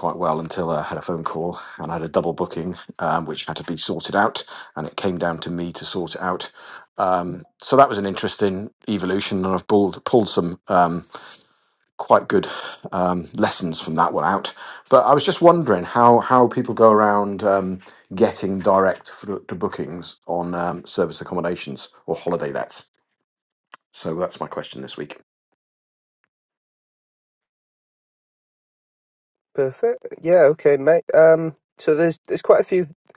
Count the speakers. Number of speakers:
two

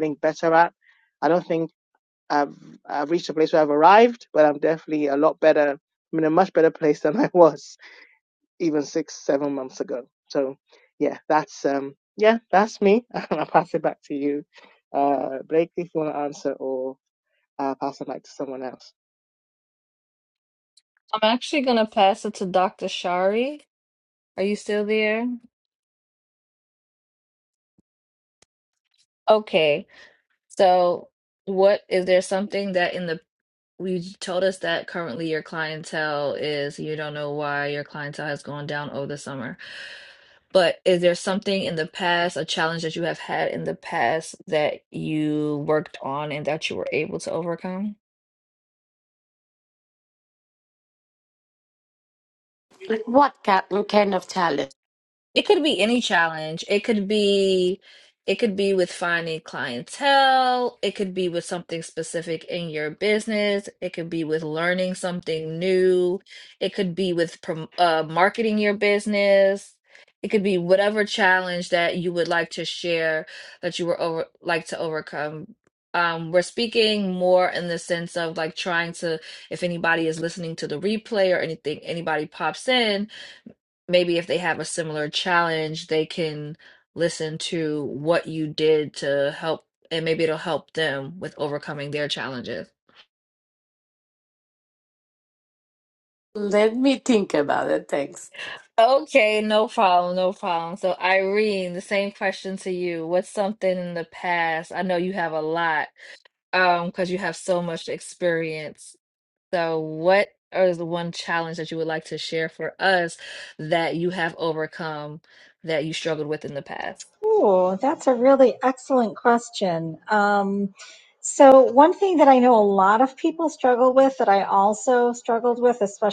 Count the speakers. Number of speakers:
four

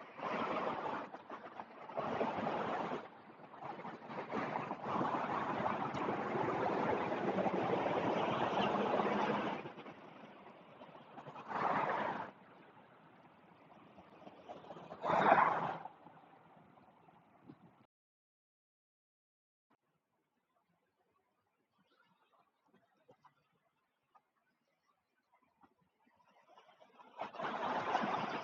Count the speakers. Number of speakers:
zero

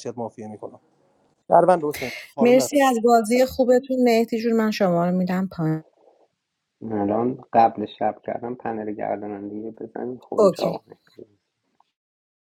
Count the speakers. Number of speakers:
three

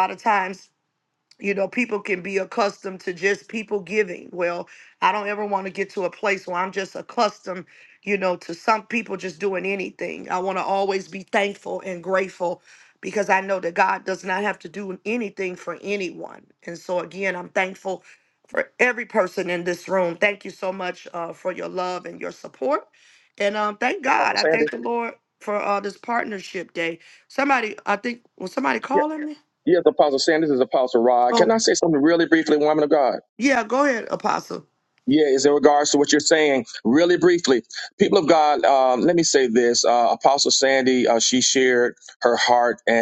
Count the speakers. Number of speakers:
two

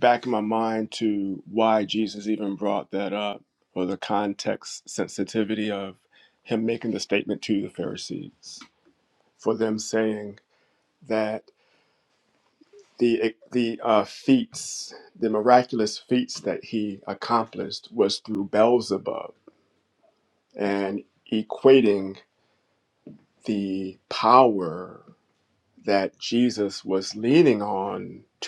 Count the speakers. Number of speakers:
one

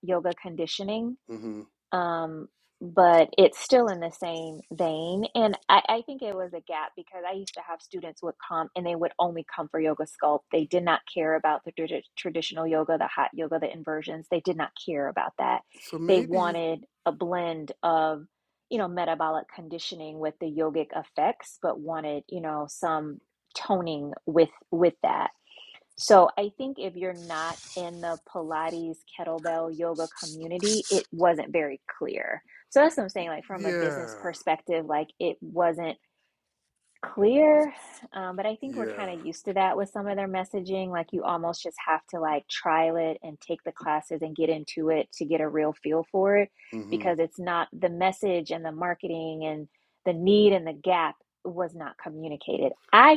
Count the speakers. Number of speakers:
two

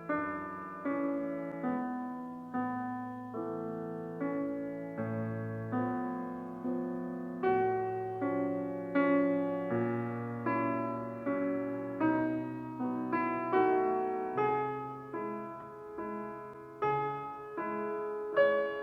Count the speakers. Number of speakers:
zero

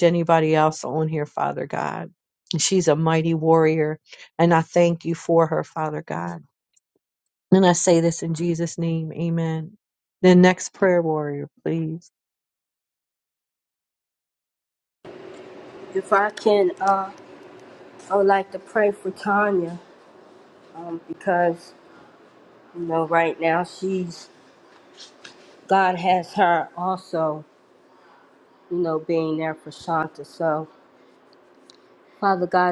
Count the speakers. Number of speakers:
two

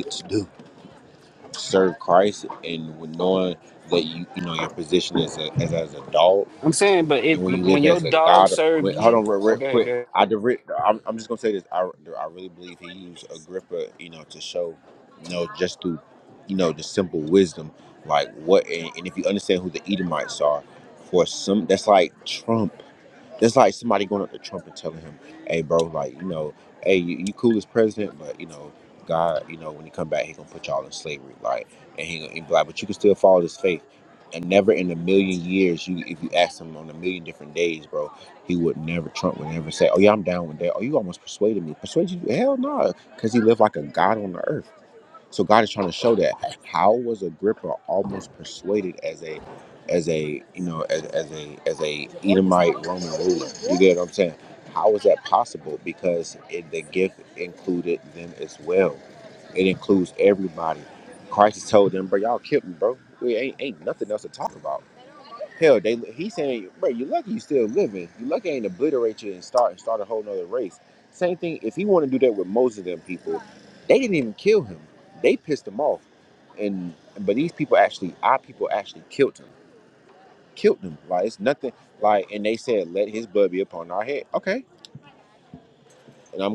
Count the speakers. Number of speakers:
two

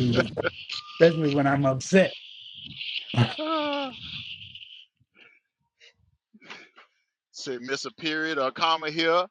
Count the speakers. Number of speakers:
two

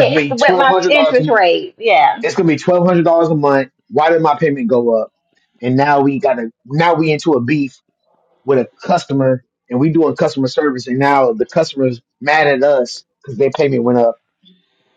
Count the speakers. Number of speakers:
two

